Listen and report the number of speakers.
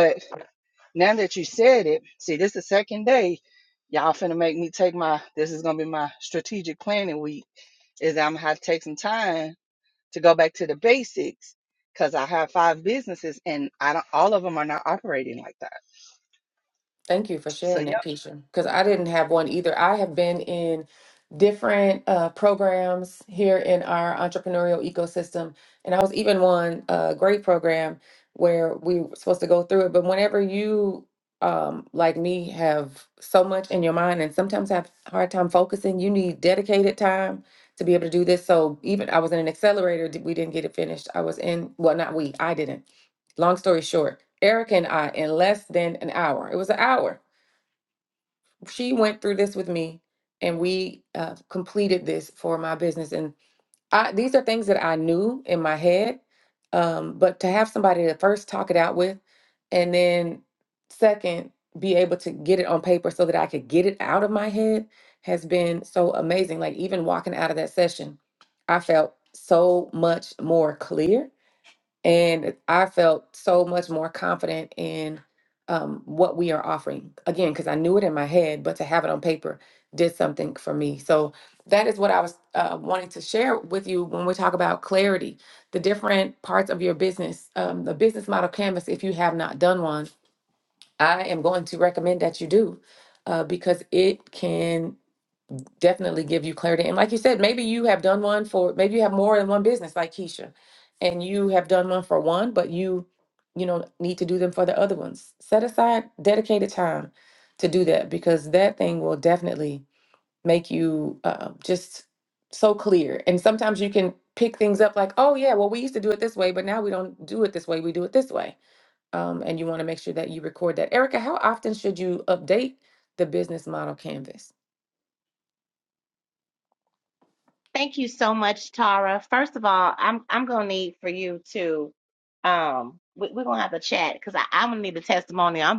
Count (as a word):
three